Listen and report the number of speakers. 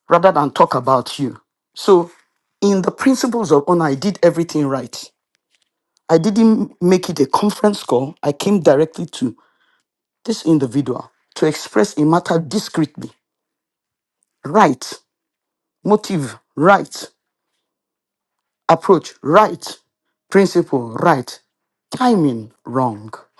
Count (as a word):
one